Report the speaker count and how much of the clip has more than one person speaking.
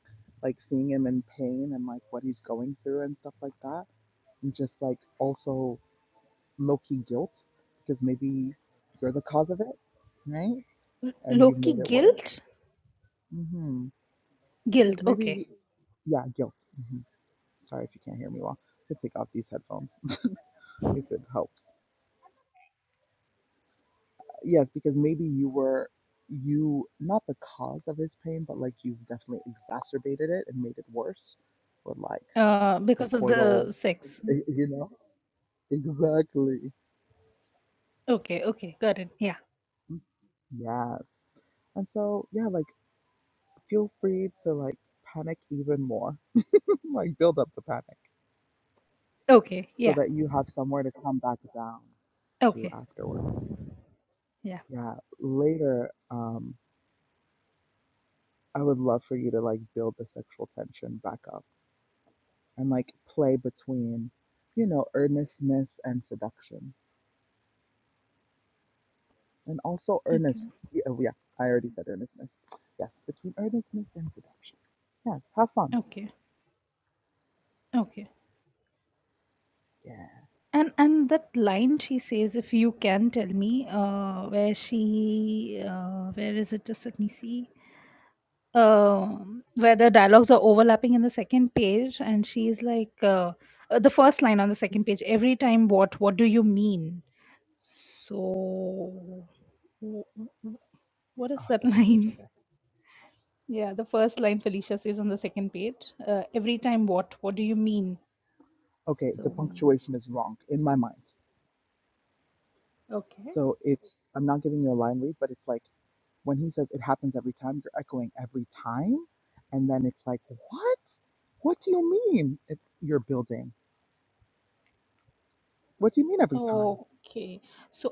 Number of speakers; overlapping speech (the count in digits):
2, about 3%